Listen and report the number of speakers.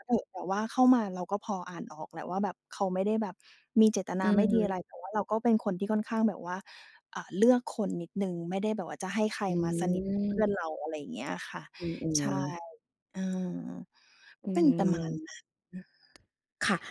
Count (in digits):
2